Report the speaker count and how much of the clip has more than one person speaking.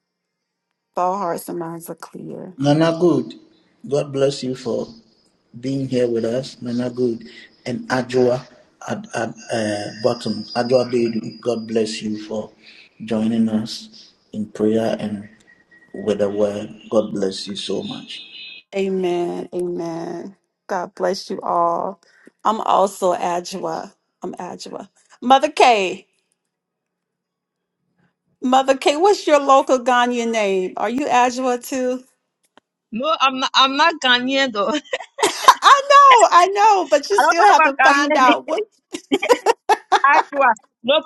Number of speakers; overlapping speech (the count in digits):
3, about 3%